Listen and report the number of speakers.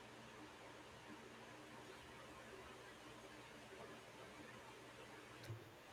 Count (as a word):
zero